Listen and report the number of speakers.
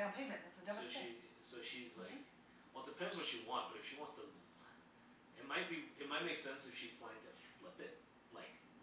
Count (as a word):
two